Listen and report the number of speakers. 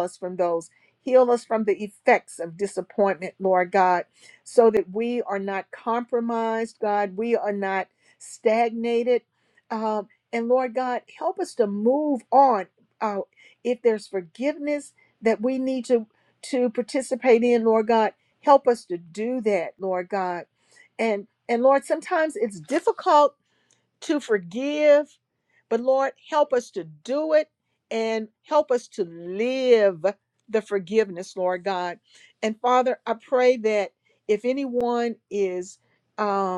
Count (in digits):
1